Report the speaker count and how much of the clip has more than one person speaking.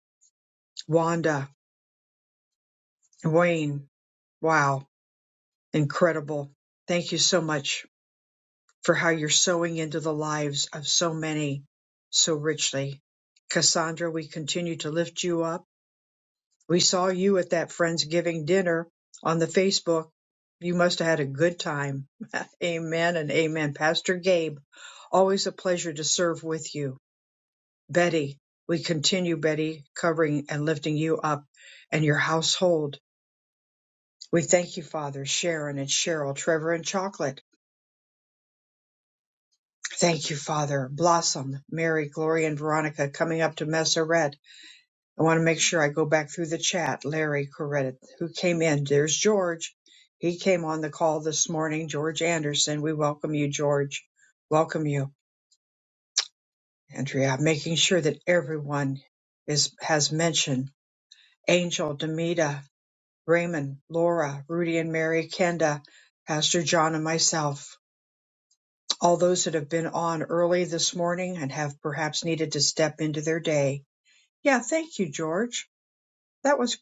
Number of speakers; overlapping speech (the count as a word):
one, no overlap